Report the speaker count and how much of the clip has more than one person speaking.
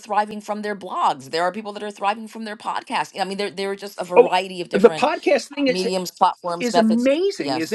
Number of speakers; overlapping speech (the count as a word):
two, about 18%